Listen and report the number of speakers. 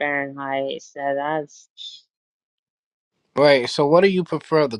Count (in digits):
2